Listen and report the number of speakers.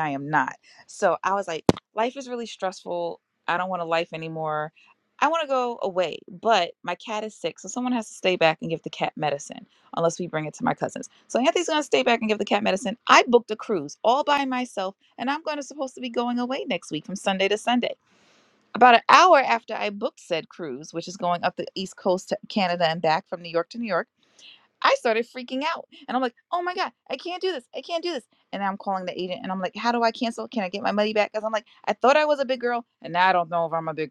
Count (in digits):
1